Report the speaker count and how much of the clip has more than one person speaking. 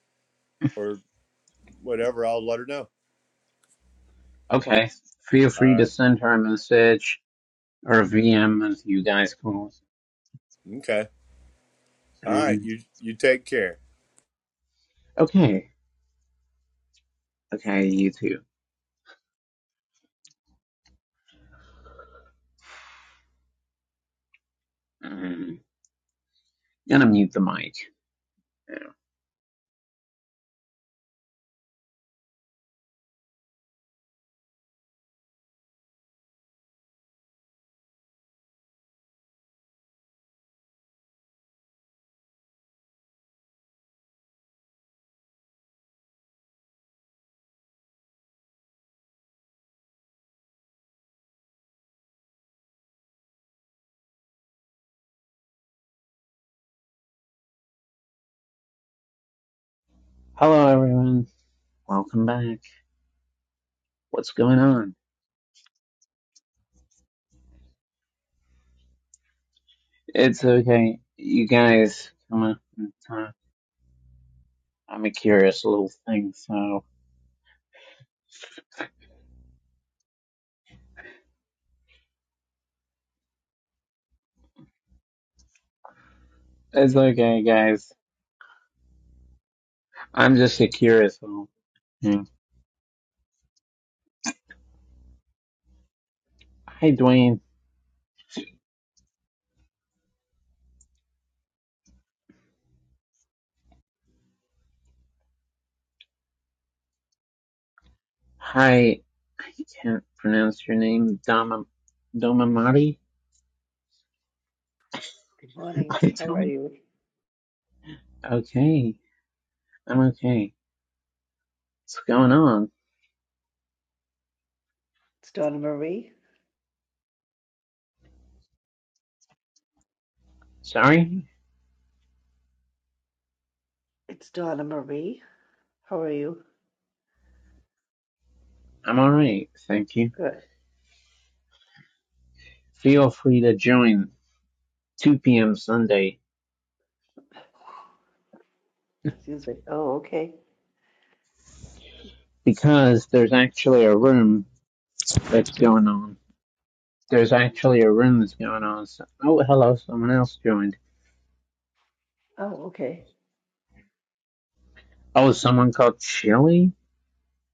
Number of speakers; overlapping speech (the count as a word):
three, about 1%